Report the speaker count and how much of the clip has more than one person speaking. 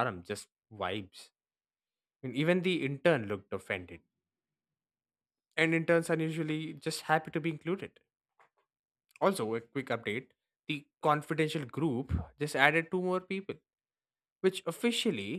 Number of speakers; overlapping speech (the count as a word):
one, no overlap